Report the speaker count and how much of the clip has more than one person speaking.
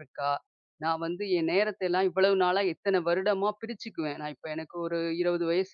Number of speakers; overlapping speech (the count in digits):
1, no overlap